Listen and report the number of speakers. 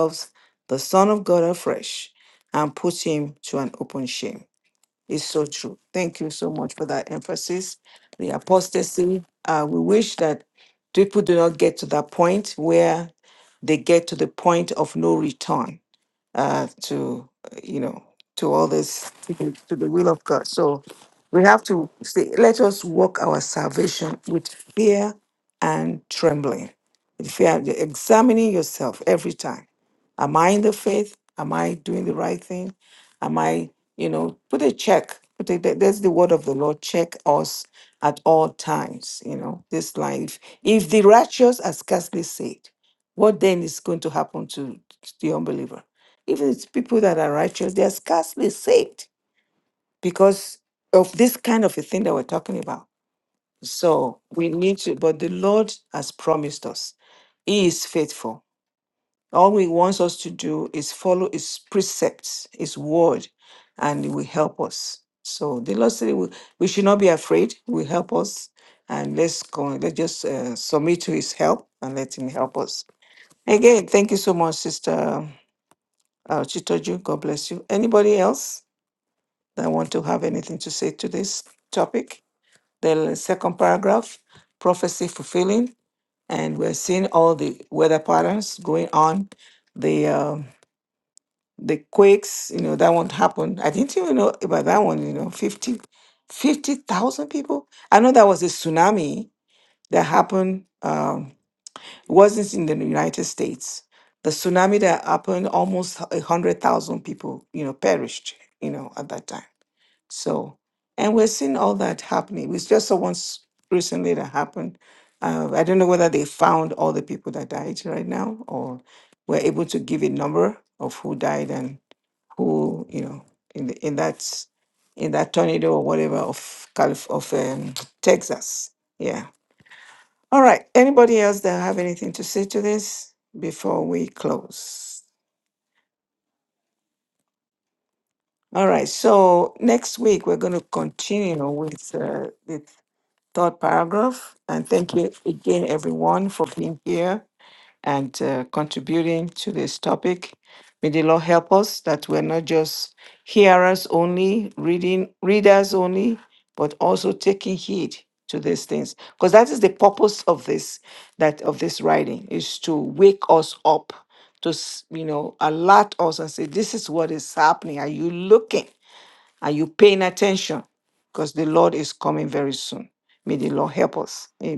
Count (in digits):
1